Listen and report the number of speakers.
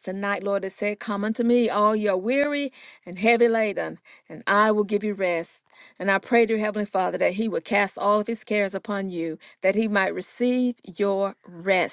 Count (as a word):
one